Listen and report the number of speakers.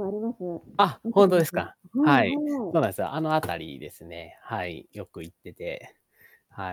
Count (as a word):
two